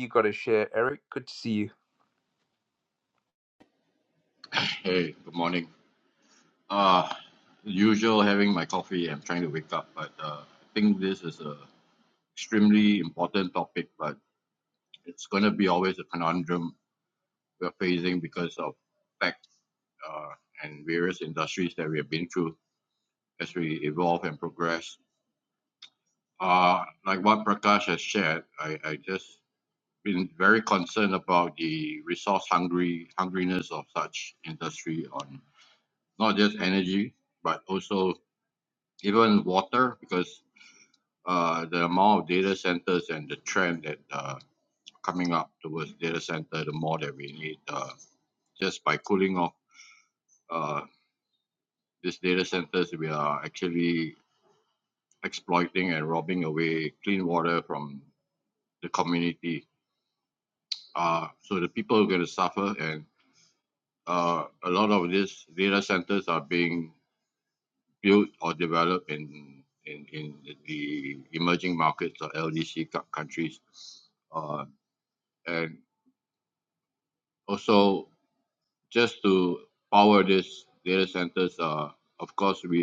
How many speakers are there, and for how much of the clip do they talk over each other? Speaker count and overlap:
2, no overlap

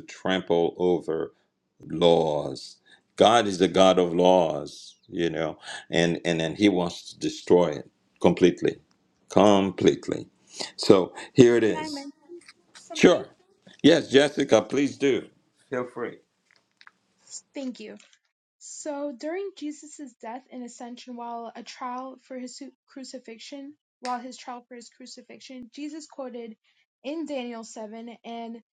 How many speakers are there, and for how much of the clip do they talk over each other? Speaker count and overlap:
2, about 2%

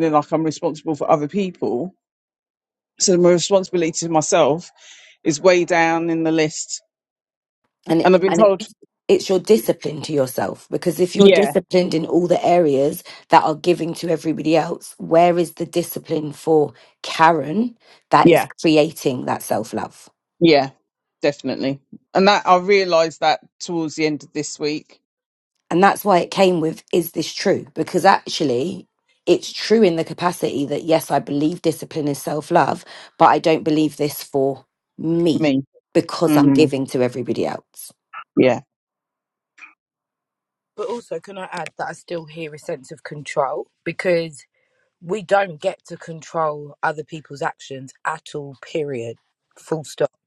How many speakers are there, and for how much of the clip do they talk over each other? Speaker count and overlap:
3, about 3%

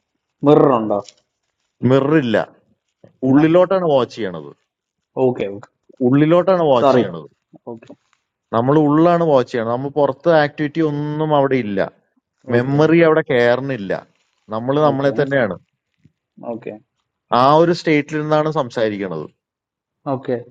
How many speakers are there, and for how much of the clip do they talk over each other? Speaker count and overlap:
2, about 6%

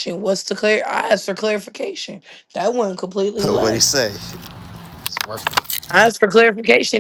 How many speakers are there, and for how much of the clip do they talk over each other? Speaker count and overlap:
2, about 5%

